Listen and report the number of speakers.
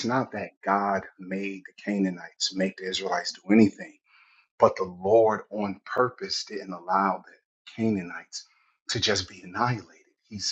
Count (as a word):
one